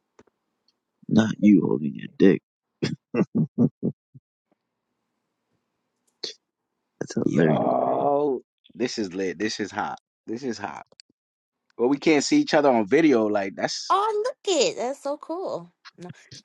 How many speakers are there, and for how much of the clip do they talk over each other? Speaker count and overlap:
3, about 2%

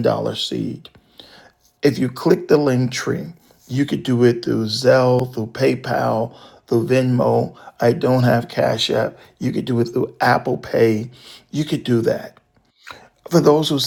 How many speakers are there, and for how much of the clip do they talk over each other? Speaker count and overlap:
1, no overlap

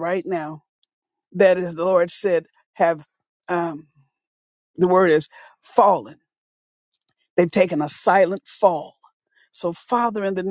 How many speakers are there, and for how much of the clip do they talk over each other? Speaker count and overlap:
1, no overlap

